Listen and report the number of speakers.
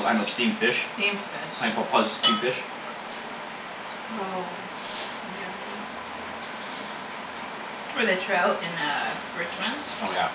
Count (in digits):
2